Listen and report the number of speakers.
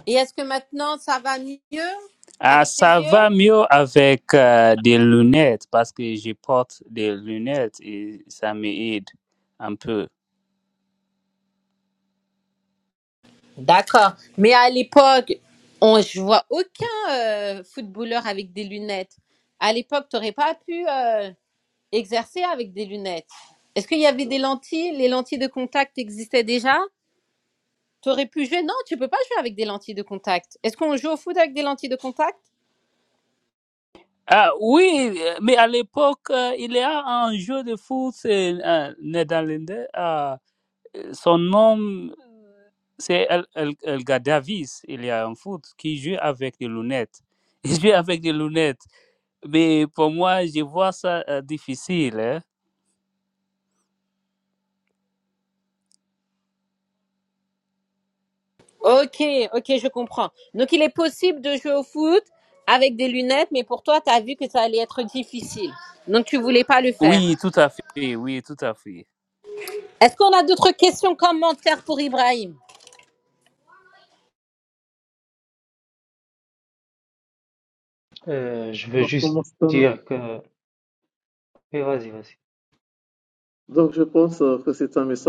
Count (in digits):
4